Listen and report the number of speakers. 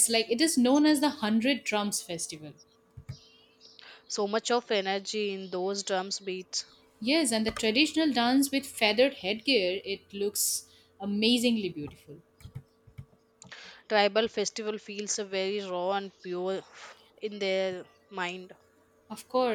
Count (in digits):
2